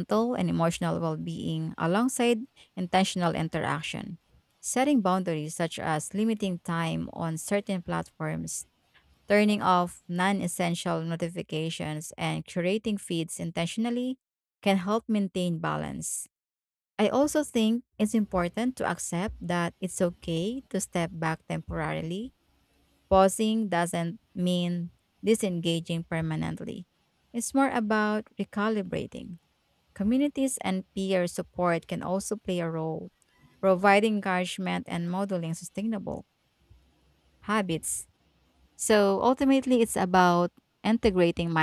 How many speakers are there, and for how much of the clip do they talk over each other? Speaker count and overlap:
1, no overlap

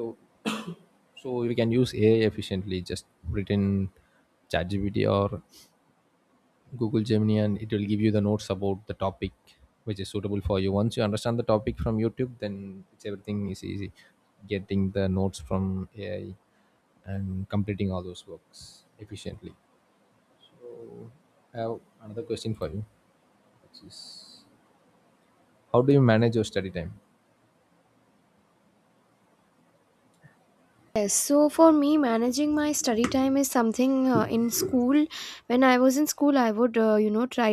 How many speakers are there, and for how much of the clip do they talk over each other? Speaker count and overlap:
2, no overlap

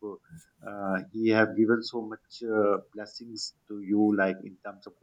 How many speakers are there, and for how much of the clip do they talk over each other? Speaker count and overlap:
1, no overlap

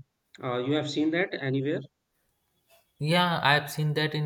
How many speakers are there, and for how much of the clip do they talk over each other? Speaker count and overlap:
2, no overlap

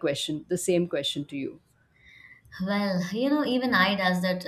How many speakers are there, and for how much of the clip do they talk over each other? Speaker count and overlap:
2, no overlap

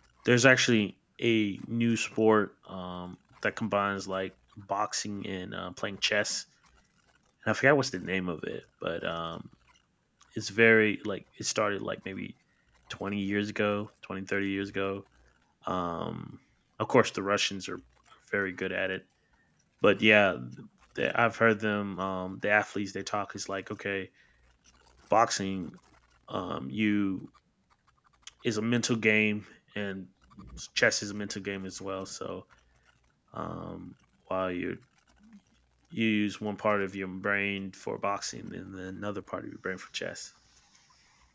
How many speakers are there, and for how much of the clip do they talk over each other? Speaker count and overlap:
1, no overlap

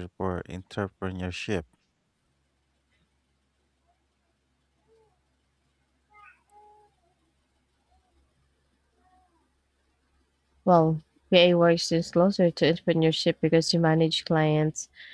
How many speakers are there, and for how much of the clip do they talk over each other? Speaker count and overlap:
2, no overlap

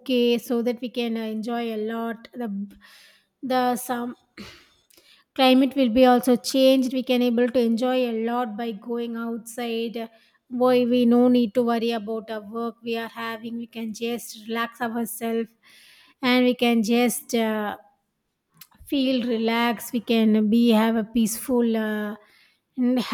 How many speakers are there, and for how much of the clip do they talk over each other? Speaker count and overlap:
1, no overlap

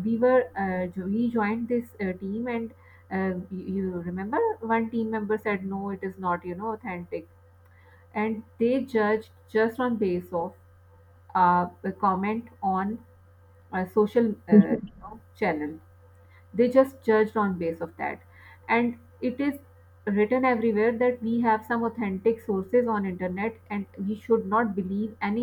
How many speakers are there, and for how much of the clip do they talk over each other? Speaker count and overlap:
1, no overlap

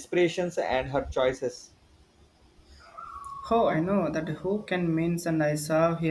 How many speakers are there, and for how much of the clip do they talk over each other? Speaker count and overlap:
2, no overlap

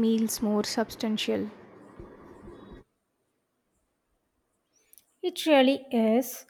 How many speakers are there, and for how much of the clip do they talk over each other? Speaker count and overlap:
2, no overlap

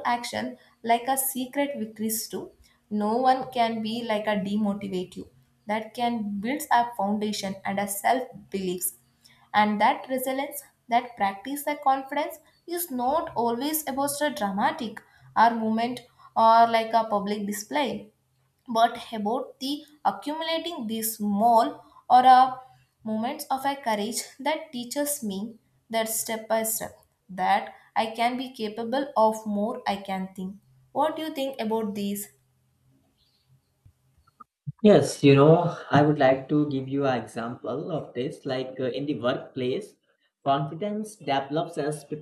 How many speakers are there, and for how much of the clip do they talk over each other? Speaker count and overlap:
2, no overlap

